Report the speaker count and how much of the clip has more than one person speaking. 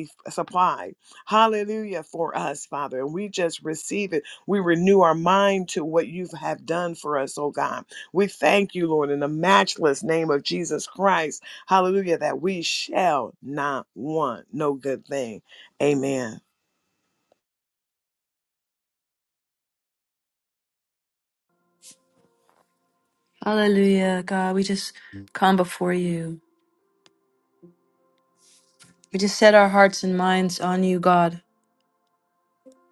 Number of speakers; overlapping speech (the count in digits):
2, no overlap